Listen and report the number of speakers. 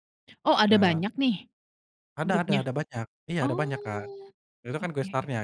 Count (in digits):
2